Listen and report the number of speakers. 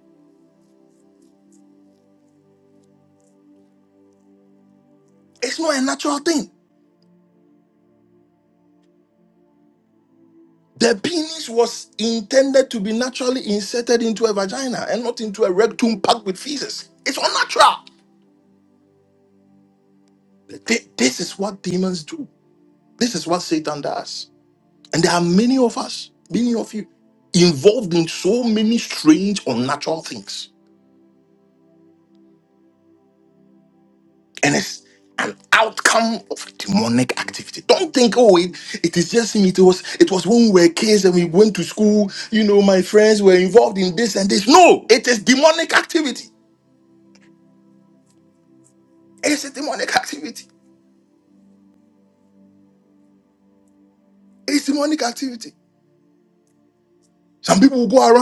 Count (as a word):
one